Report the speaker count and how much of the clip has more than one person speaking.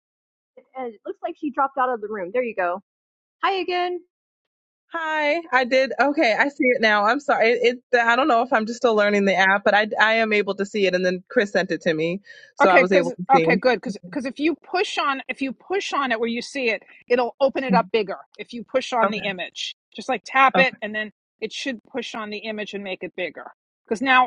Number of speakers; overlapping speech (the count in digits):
3, about 6%